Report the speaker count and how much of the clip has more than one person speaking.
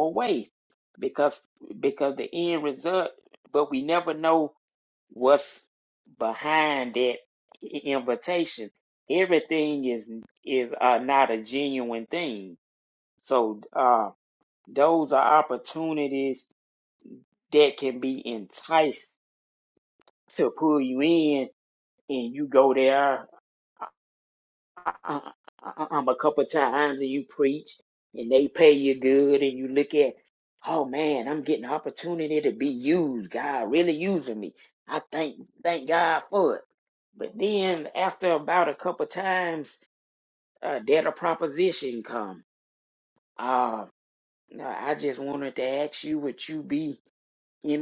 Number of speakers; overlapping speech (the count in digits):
1, no overlap